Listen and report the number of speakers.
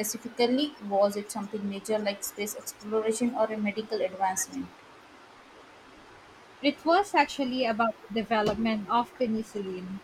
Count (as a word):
two